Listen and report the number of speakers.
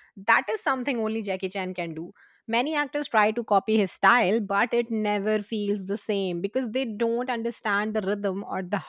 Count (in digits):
1